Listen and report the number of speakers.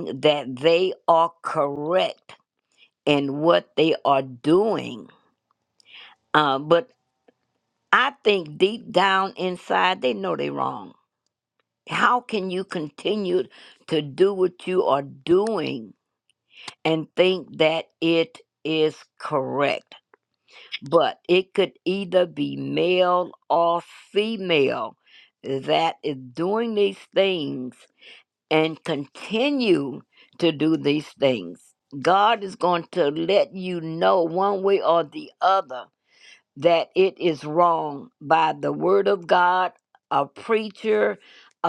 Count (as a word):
one